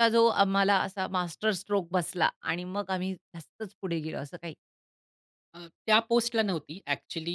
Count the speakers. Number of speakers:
two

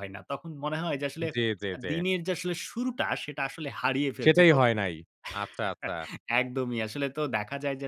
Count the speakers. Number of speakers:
two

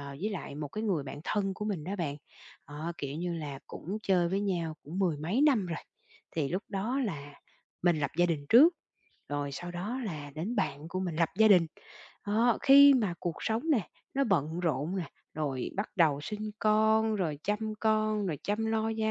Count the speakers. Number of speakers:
one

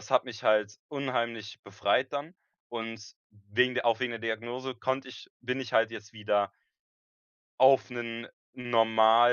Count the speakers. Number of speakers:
one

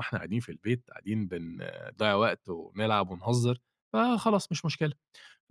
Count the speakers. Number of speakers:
one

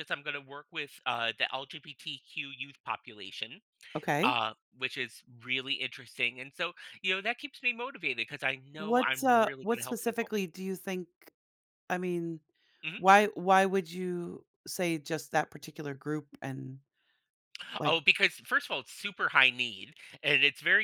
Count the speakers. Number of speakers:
two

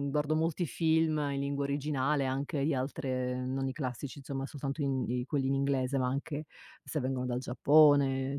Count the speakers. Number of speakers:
one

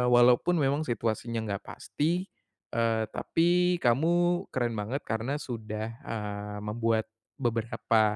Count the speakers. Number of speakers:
one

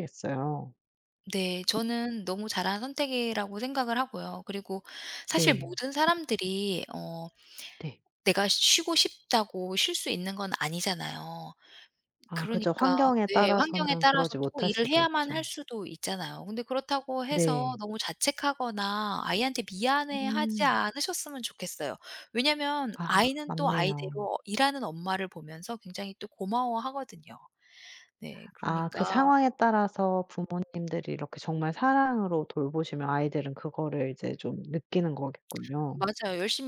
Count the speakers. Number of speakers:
two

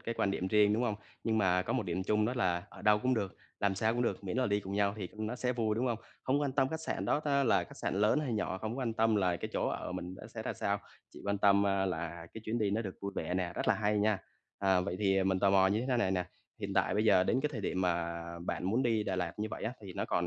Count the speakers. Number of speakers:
one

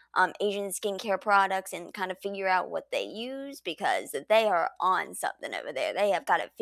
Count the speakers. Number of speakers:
one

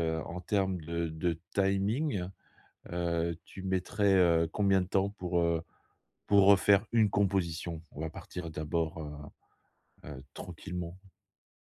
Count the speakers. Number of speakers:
one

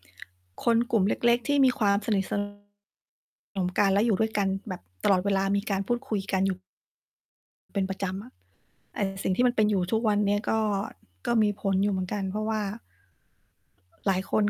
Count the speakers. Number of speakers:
one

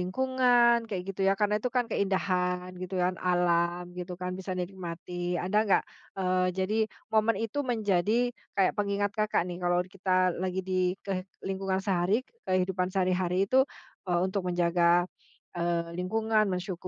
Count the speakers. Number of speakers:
one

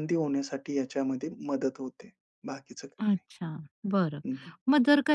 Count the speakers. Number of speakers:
two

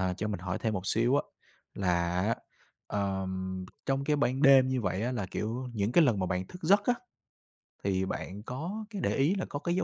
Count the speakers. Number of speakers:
one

